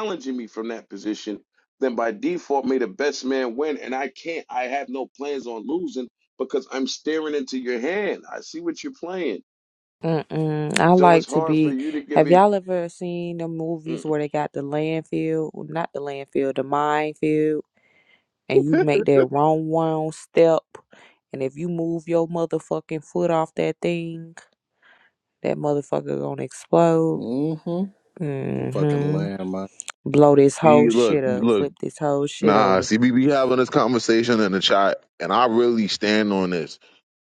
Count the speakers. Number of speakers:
four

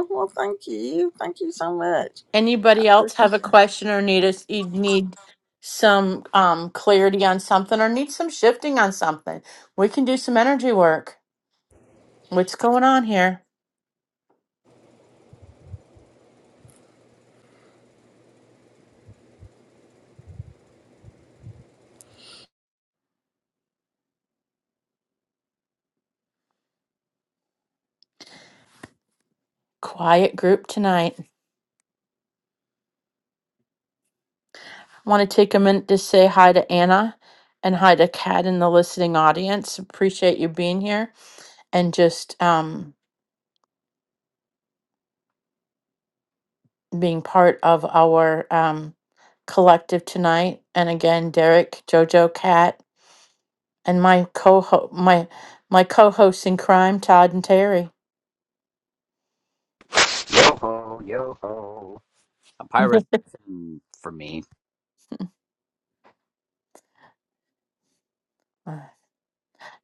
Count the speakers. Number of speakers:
three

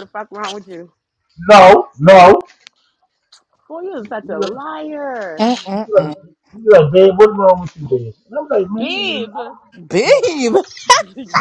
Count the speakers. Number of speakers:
three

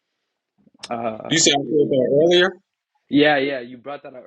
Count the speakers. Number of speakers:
two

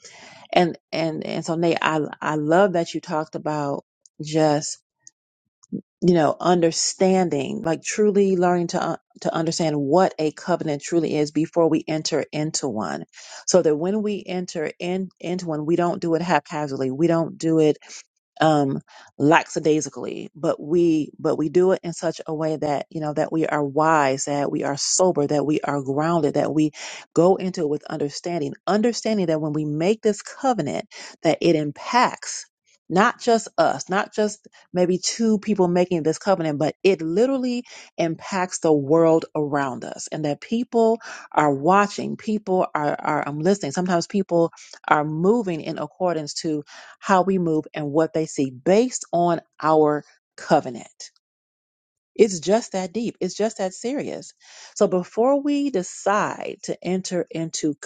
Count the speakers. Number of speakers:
one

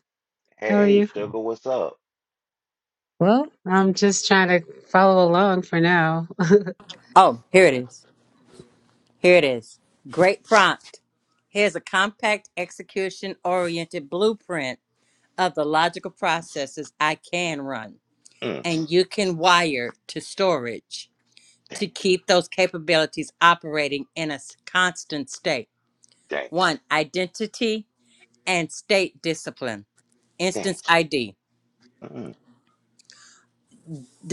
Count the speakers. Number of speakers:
three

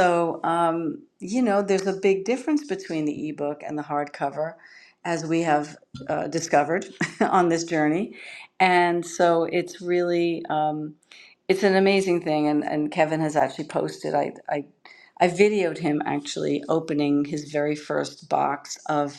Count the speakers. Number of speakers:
one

